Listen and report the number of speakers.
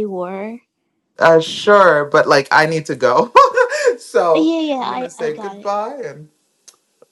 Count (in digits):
2